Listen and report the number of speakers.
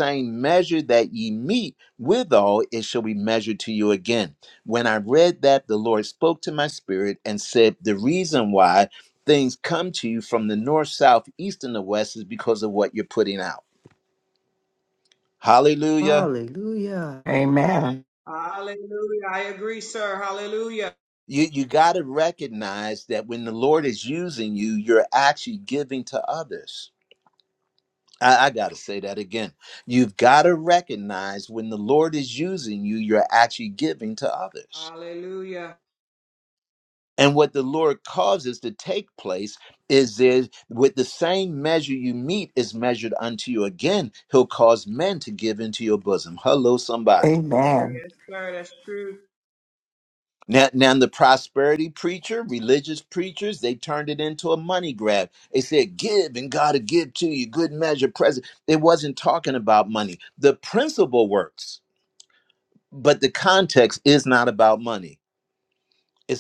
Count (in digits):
4